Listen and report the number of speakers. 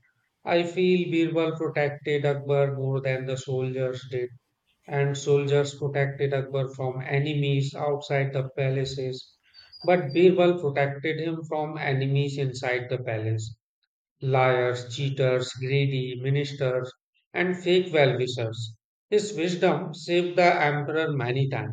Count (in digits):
1